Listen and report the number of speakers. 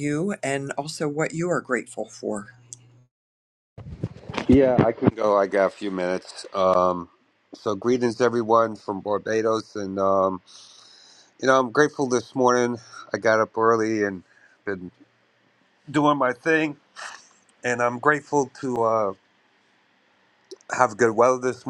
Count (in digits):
2